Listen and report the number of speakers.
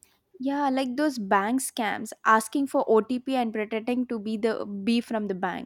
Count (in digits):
1